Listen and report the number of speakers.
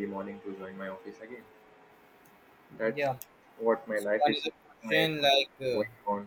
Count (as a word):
two